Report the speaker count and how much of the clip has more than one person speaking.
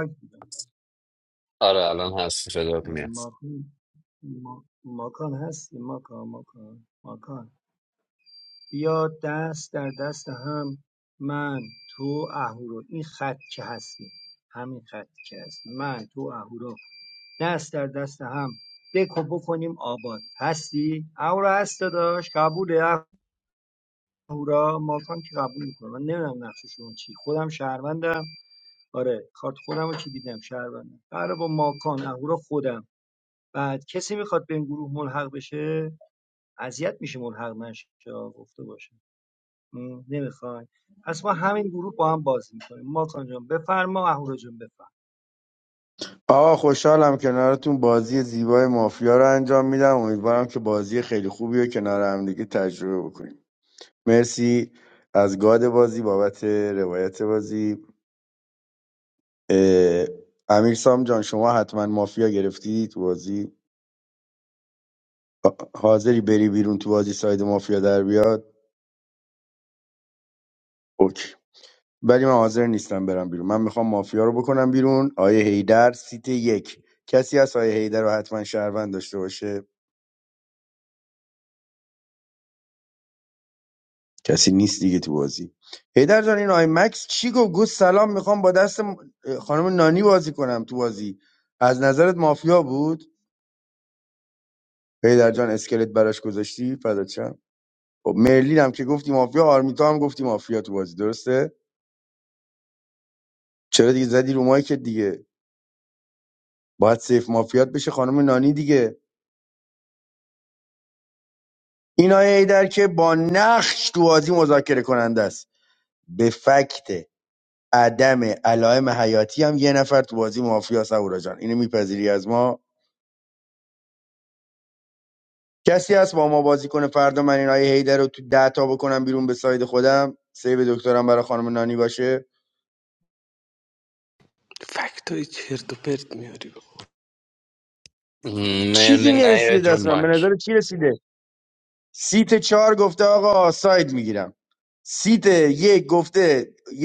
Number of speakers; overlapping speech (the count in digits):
4, about 1%